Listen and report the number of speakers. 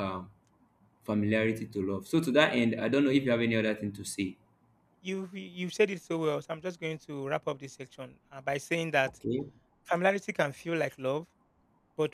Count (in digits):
2